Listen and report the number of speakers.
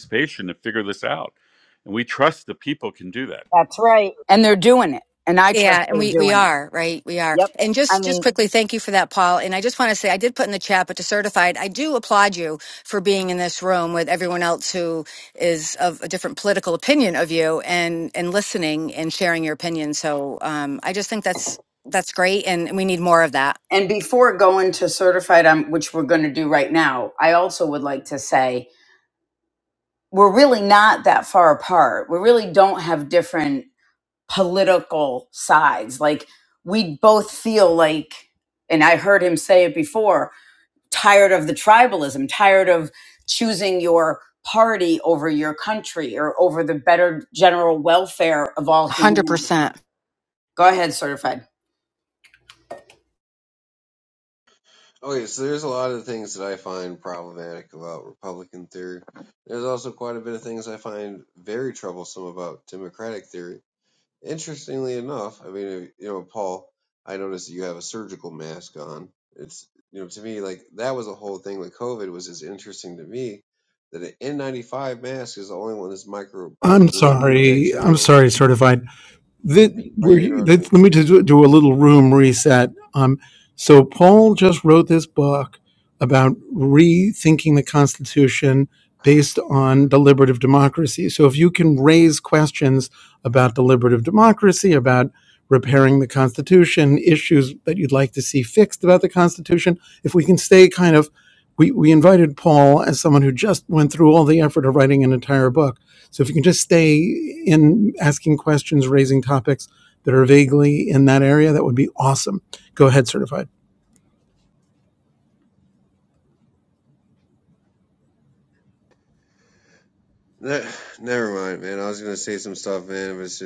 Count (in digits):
5